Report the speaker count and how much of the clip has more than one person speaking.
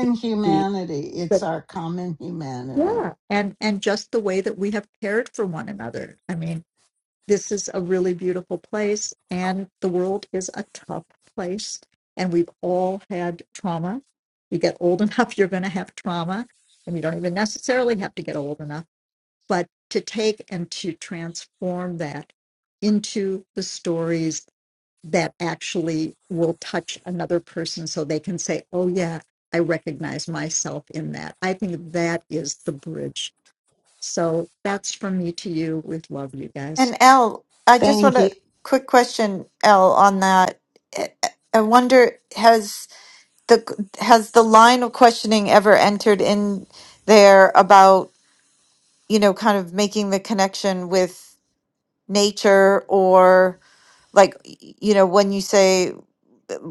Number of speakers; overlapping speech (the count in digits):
3, about 2%